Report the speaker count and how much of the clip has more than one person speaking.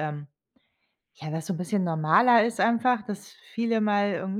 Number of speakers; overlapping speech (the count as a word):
one, no overlap